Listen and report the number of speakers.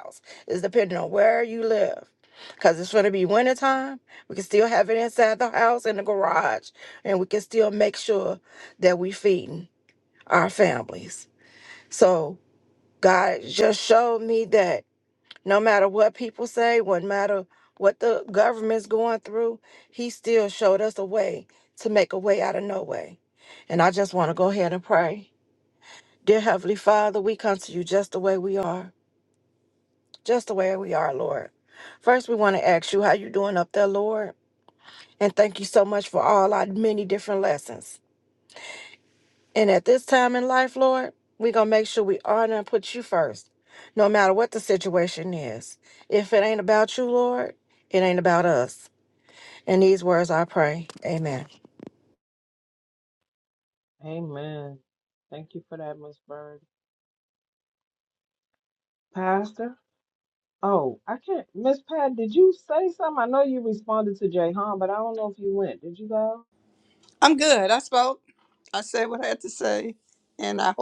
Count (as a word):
three